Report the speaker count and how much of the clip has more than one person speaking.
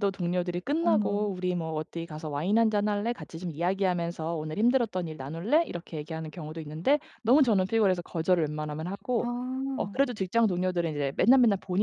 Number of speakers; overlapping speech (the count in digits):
2, about 6%